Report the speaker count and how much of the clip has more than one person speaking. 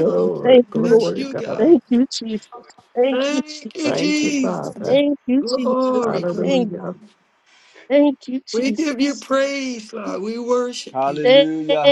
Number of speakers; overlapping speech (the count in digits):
4, about 46%